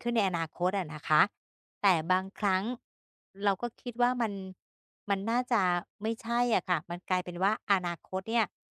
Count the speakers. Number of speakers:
one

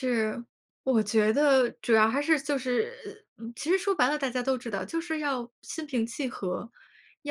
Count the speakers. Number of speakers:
one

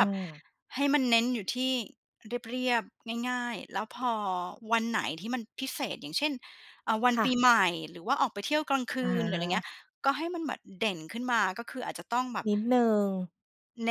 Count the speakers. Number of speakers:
two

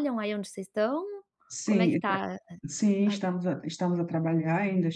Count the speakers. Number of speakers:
two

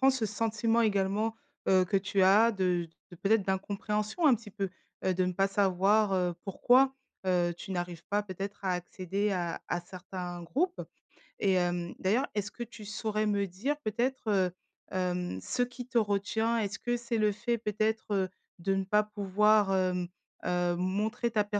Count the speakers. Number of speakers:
one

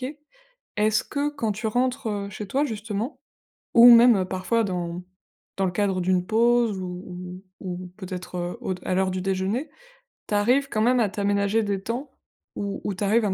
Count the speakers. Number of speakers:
one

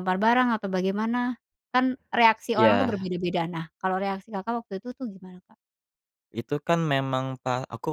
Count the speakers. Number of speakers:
two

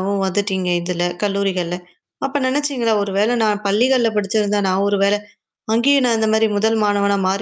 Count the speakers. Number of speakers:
one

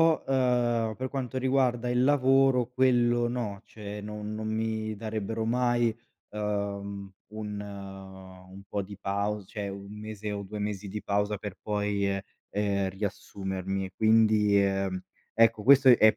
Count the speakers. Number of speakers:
one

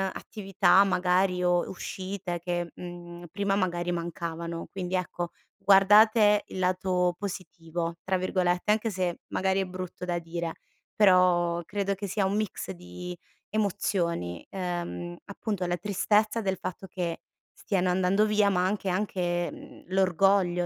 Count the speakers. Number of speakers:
one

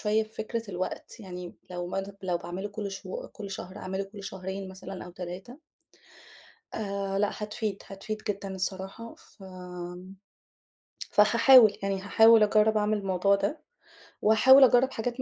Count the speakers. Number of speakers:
one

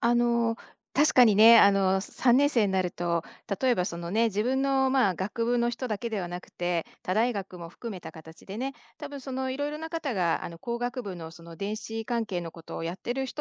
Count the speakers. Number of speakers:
one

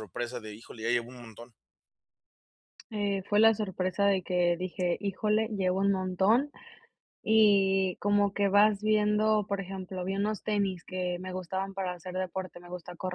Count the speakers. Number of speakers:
two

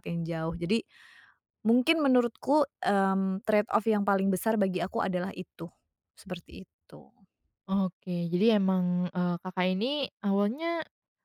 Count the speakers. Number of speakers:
two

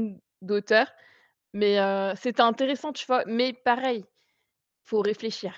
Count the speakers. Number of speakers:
one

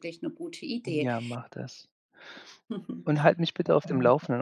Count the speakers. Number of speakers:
two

